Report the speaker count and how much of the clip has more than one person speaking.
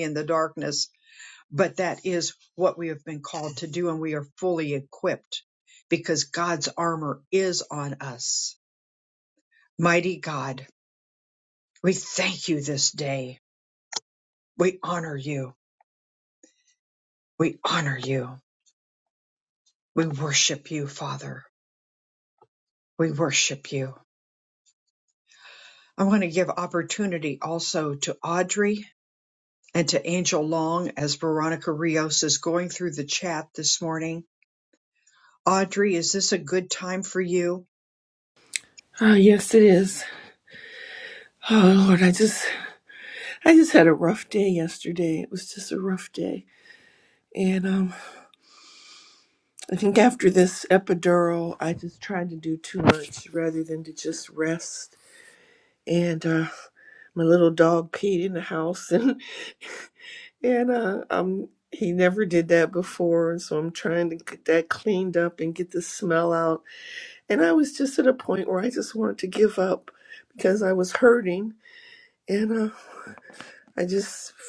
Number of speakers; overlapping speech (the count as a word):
two, no overlap